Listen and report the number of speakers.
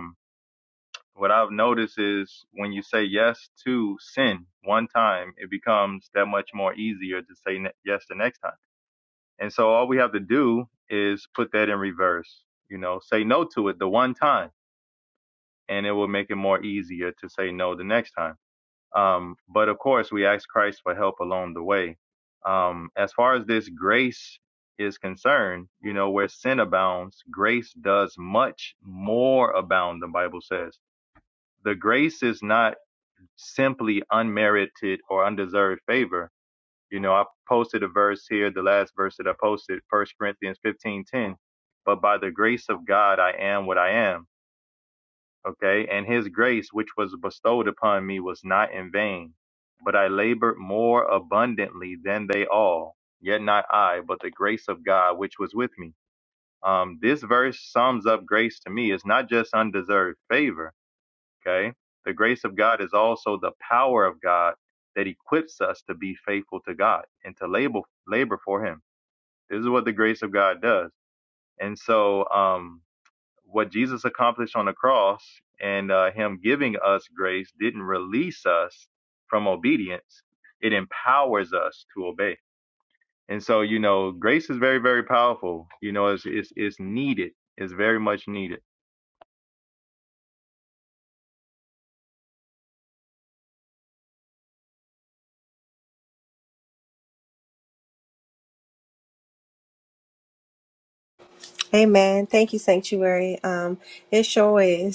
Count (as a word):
two